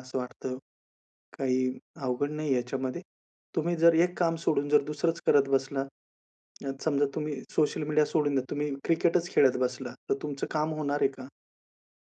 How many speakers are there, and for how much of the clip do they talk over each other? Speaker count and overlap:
one, no overlap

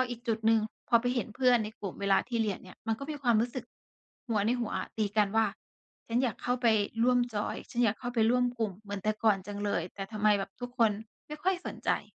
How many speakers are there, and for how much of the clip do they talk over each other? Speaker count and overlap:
one, no overlap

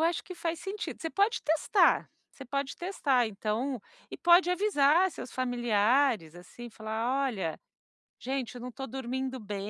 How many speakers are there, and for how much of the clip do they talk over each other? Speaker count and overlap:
one, no overlap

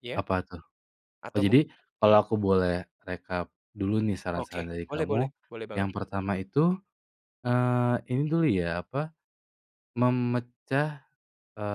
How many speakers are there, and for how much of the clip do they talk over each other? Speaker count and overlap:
two, about 12%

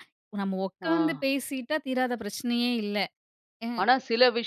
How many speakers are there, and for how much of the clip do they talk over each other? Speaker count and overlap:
two, about 9%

